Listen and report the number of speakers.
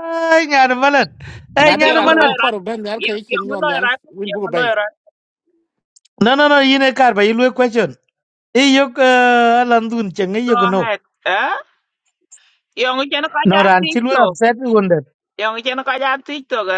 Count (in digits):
3